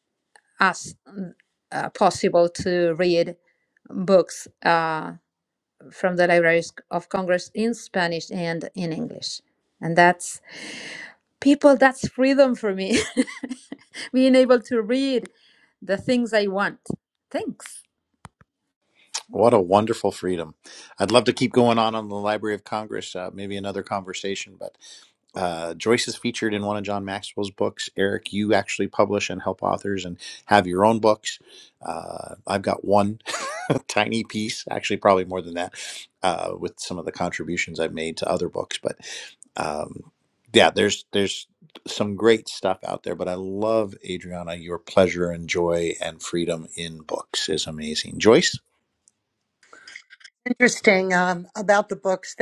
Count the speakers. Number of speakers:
3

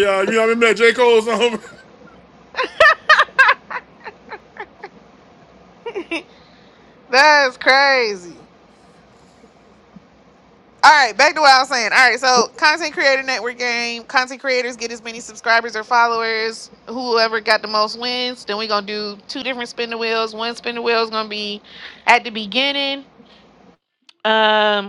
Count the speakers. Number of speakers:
2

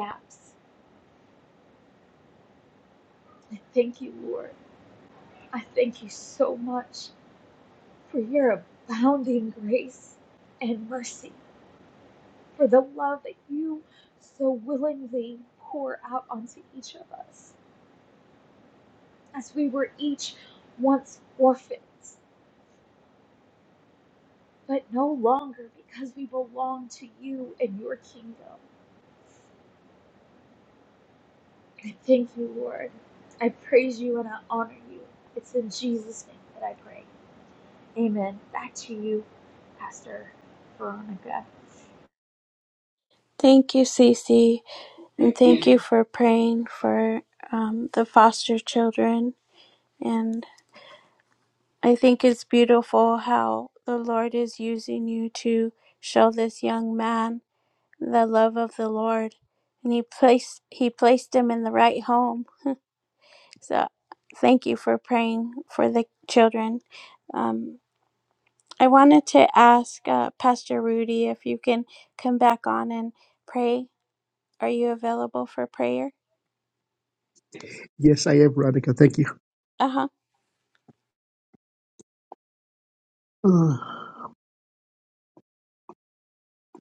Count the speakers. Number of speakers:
3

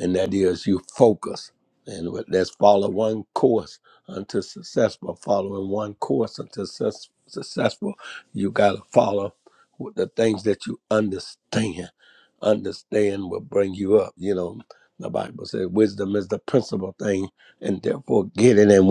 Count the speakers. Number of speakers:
1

